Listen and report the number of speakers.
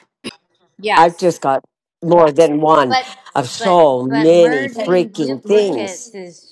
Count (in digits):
2